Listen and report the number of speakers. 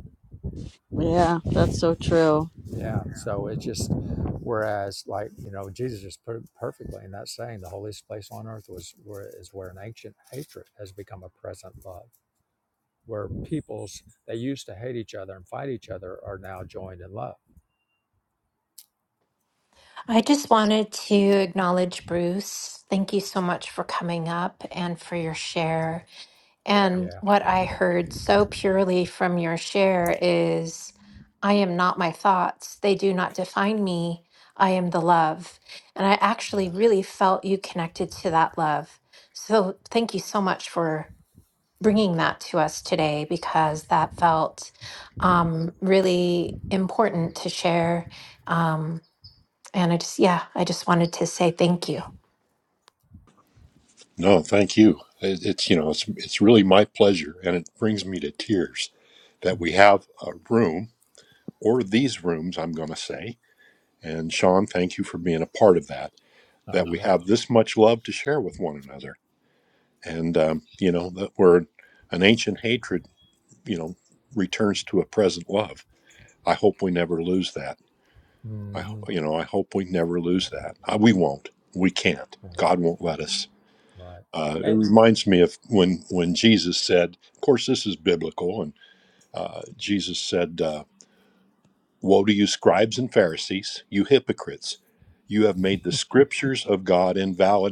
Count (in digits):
4